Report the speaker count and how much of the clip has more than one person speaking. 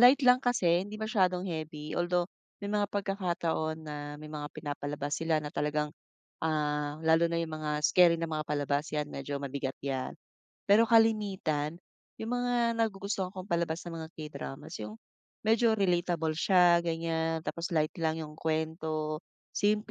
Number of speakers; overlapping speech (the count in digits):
1, no overlap